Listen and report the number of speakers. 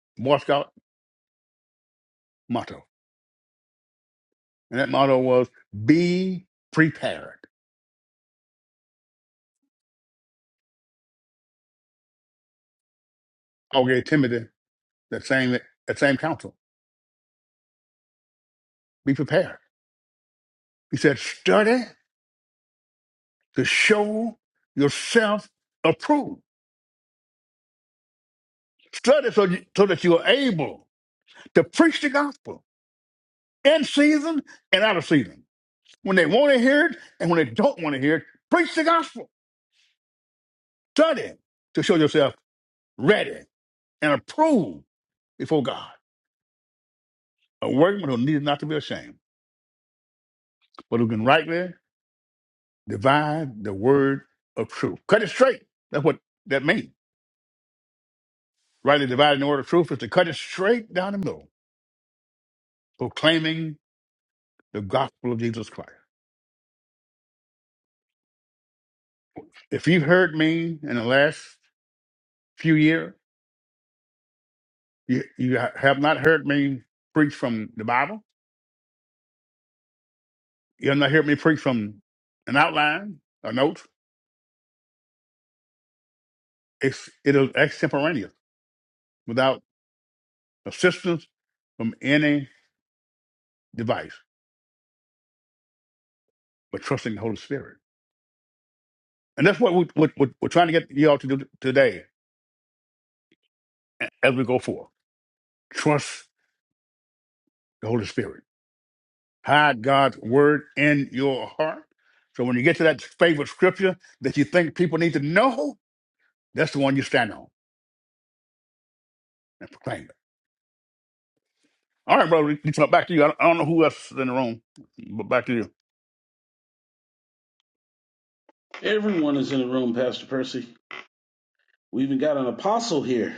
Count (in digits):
2